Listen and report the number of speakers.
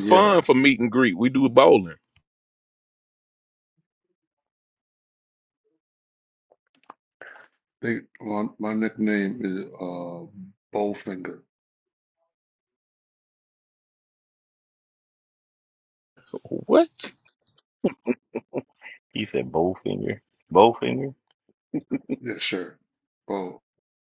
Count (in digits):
3